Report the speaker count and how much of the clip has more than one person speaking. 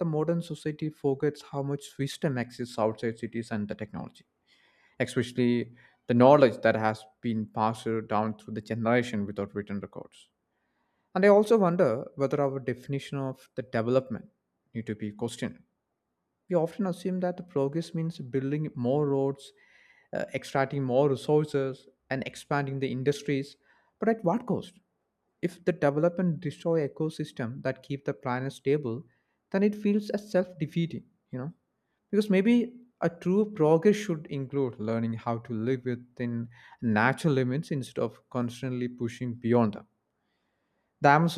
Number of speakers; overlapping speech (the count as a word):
one, no overlap